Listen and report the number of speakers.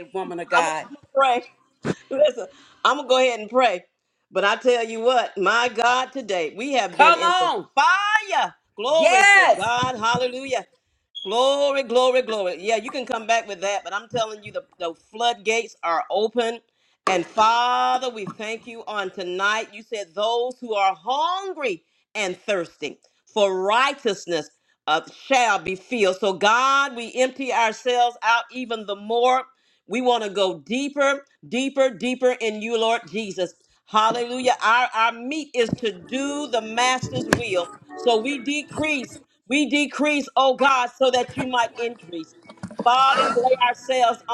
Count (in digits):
2